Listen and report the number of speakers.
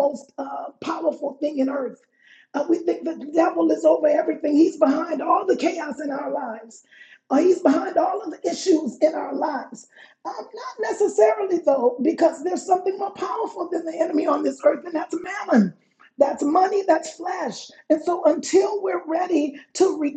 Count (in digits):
1